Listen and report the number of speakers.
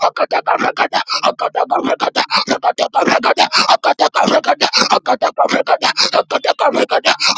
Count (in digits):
1